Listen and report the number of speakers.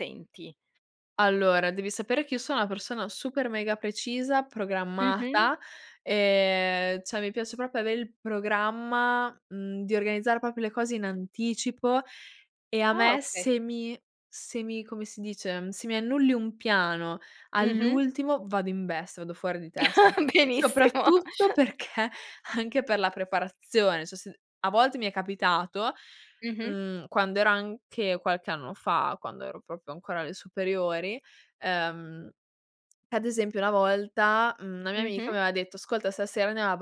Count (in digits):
2